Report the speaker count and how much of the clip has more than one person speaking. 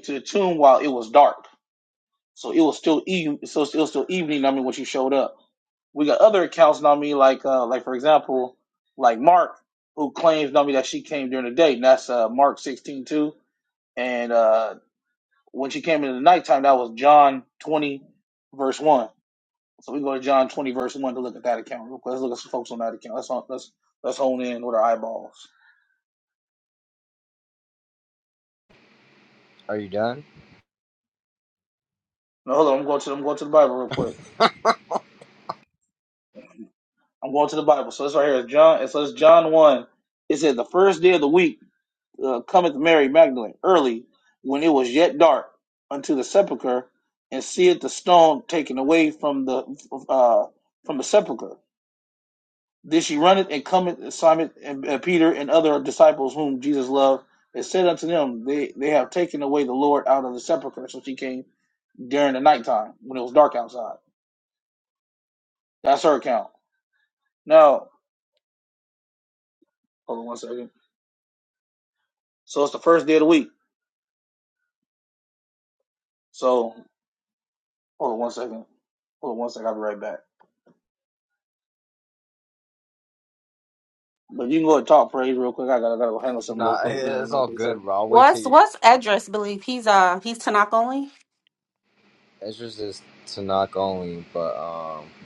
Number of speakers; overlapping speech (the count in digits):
3, about 2%